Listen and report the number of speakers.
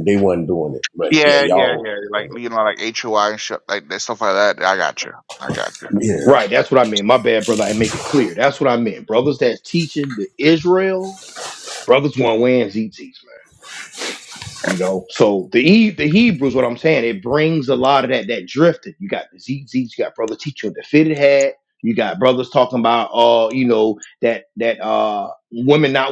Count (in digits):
3